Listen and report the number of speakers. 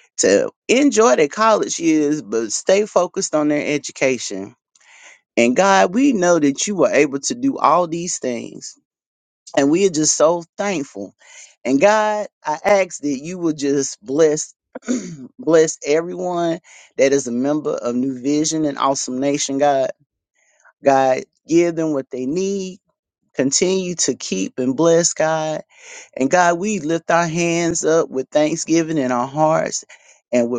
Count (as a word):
one